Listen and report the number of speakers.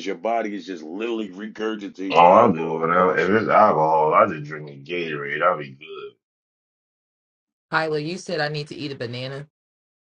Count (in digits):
3